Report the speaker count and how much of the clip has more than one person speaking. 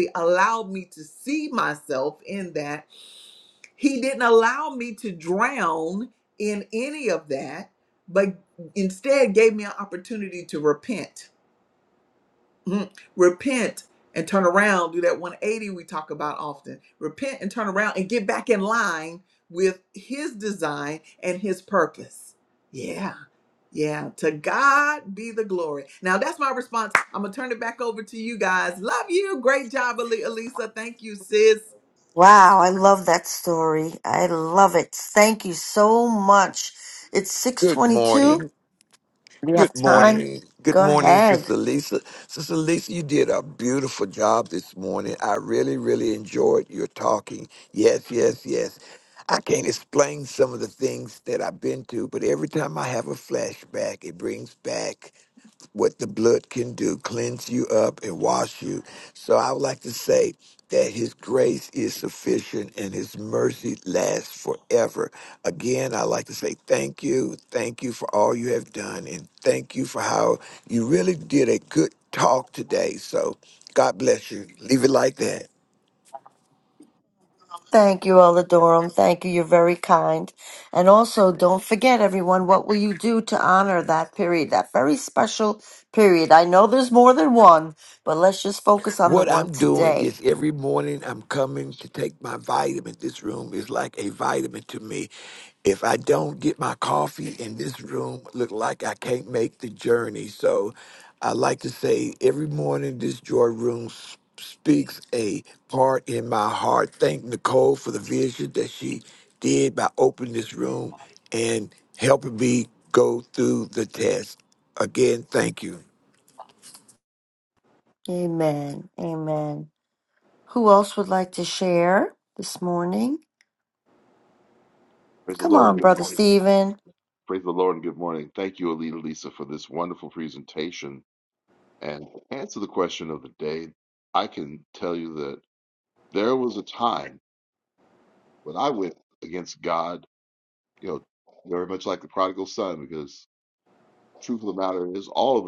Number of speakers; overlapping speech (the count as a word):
four, about 3%